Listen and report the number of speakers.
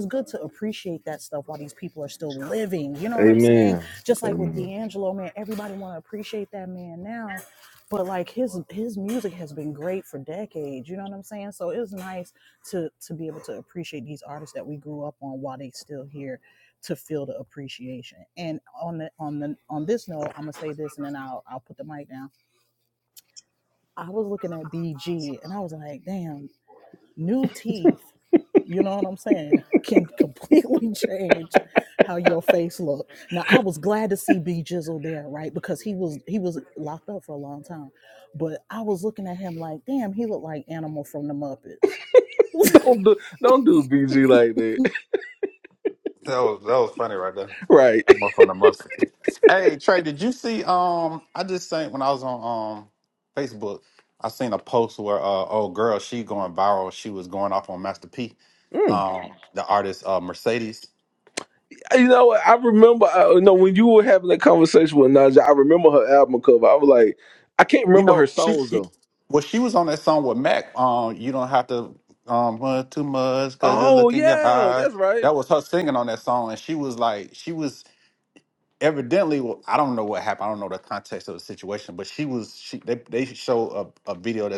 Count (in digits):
3